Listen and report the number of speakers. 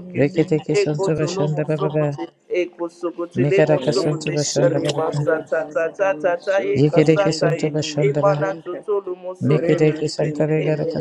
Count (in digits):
3